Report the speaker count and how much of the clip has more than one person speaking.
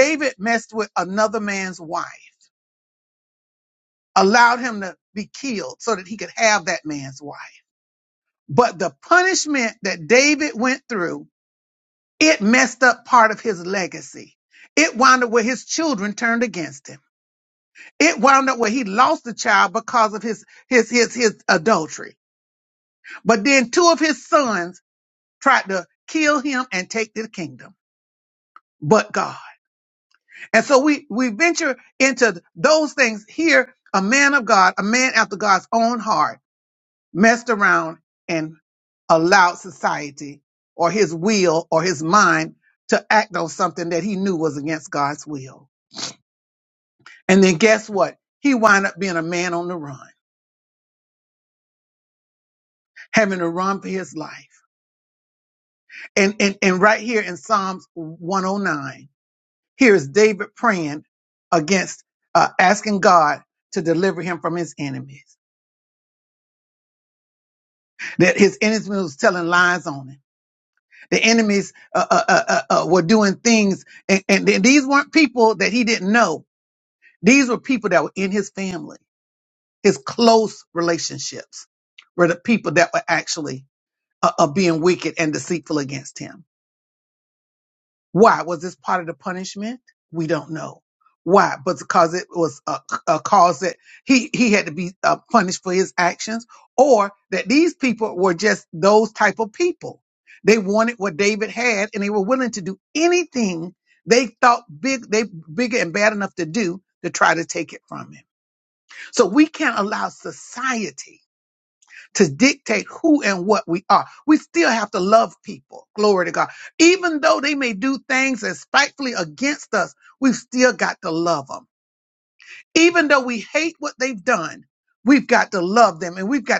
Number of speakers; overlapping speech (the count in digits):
1, no overlap